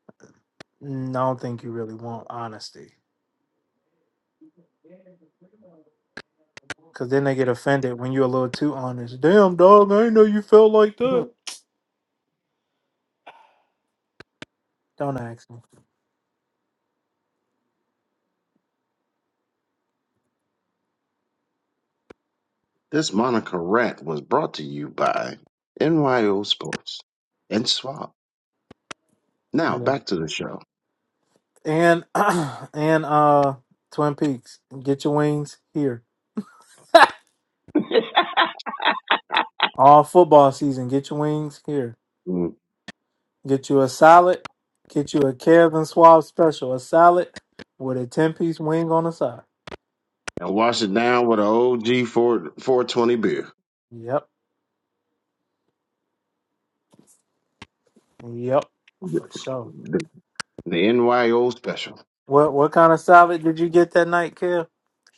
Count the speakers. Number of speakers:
2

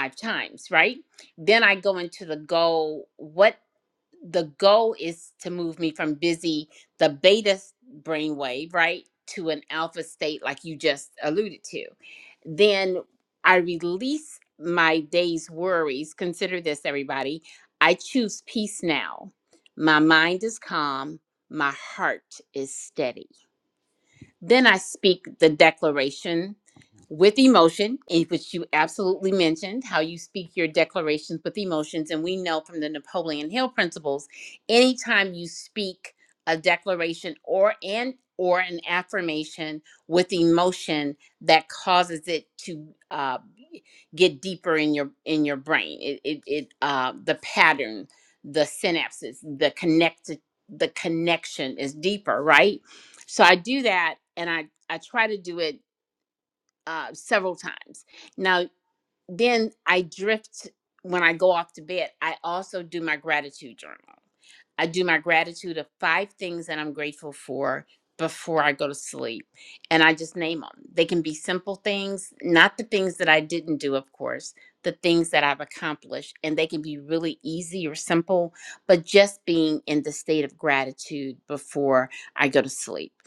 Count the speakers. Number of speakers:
1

